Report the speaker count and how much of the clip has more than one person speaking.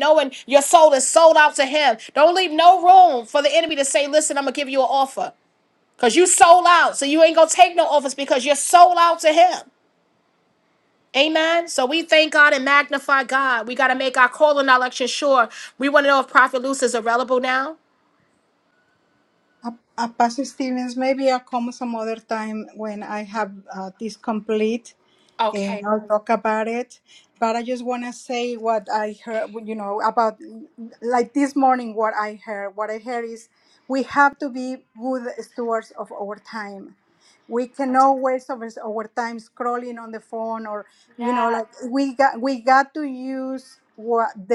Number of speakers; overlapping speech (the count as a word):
two, about 1%